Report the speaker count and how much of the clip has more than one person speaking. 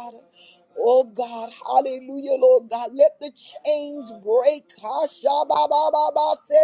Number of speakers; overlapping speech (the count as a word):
one, no overlap